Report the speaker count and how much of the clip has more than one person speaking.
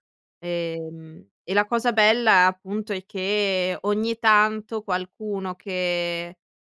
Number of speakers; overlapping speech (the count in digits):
1, no overlap